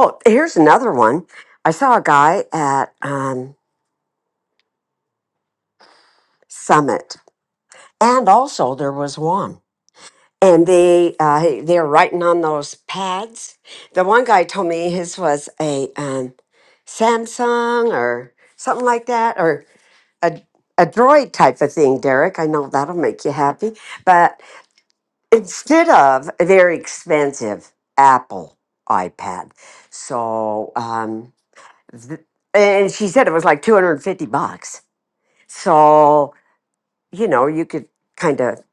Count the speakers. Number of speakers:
one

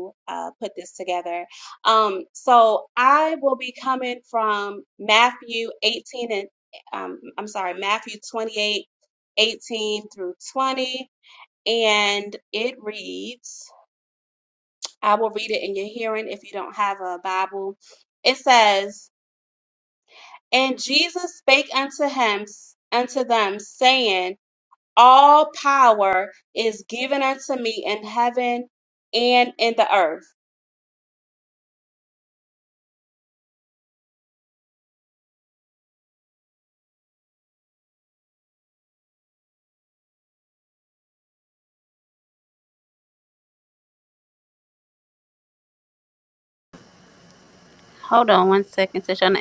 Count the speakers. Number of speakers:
two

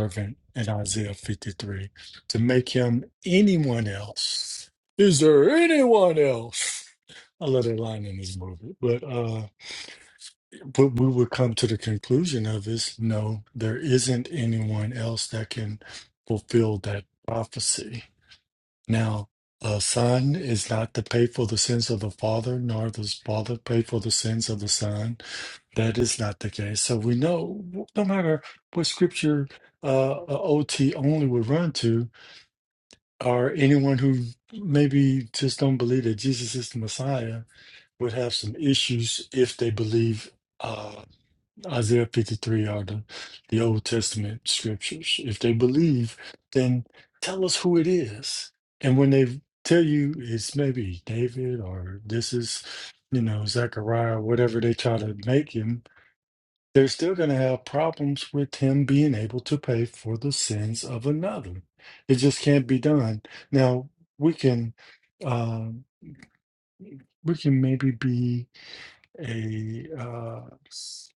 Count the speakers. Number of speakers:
one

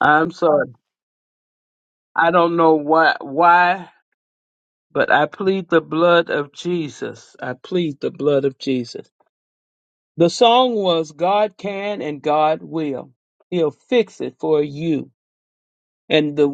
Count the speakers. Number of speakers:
one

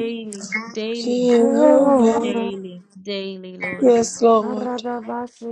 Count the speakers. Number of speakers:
three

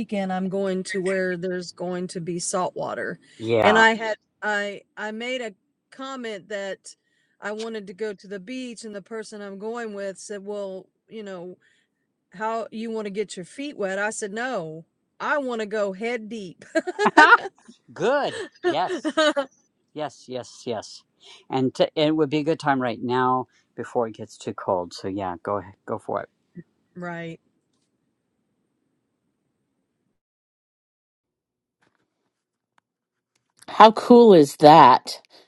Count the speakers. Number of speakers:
three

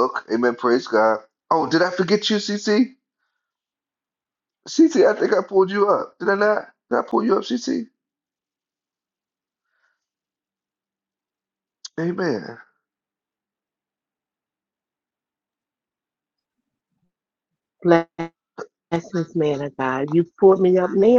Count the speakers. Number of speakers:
two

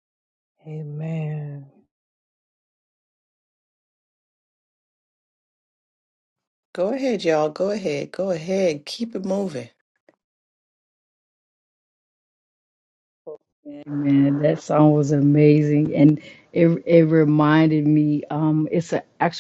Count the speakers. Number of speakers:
three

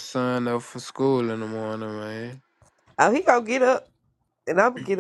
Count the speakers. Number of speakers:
two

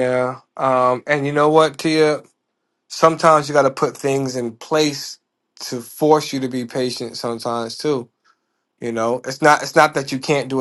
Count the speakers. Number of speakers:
one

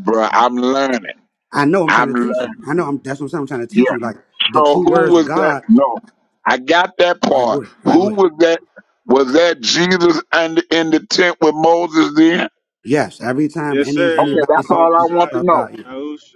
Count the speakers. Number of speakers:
three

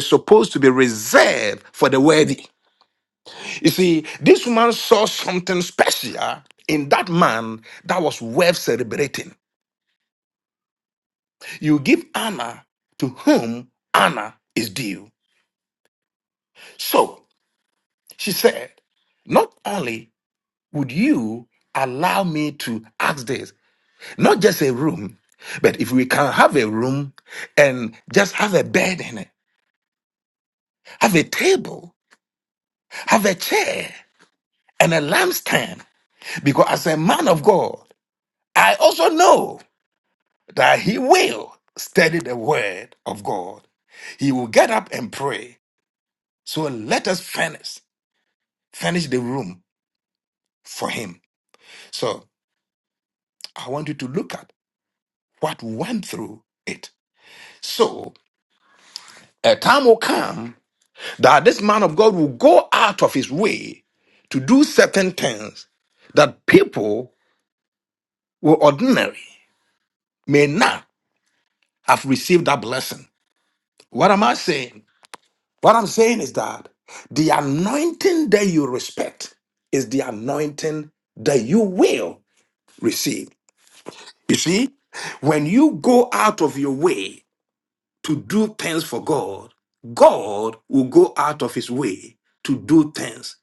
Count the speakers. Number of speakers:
one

